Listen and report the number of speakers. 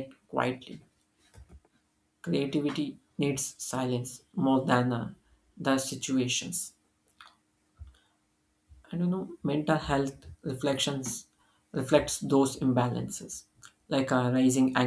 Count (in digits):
1